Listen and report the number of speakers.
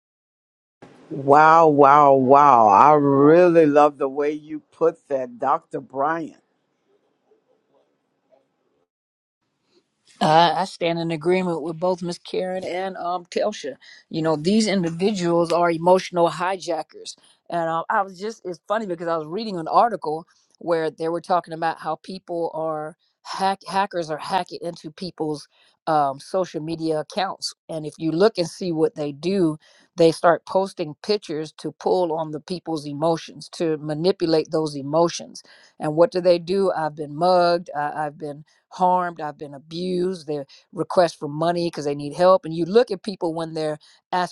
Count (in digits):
2